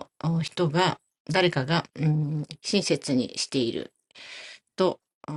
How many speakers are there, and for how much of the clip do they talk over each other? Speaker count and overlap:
one, no overlap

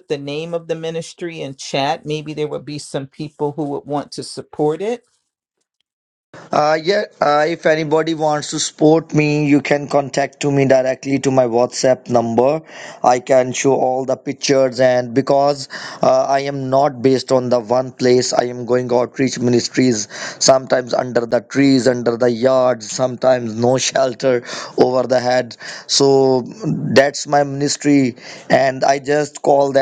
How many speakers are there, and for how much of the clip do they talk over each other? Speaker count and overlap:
two, no overlap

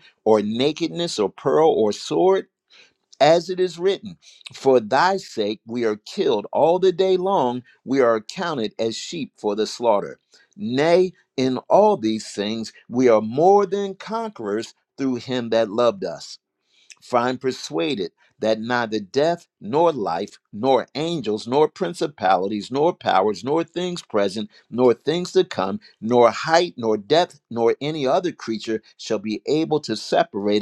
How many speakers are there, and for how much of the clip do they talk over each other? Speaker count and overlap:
one, no overlap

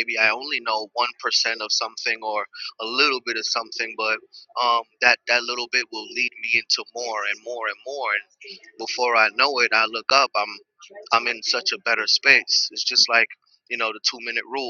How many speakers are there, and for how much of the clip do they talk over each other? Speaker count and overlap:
one, no overlap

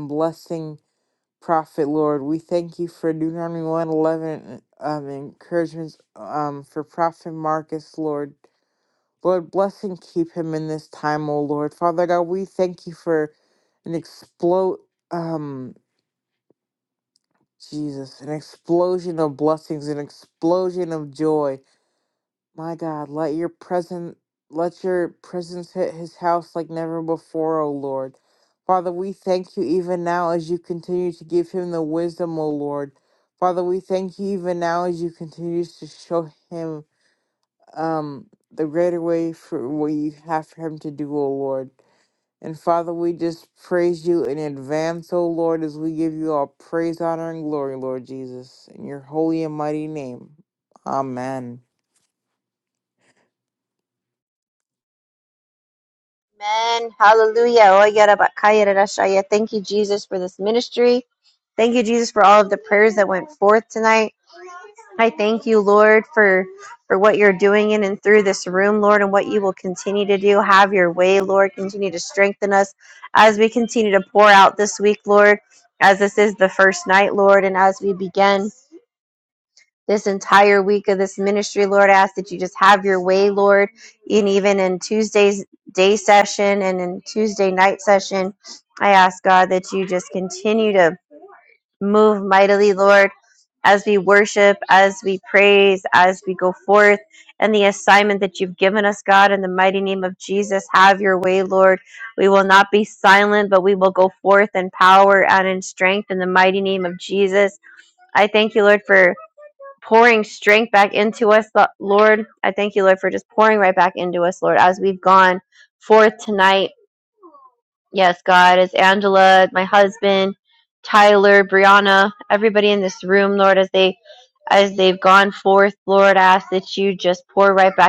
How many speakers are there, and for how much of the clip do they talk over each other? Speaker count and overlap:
two, no overlap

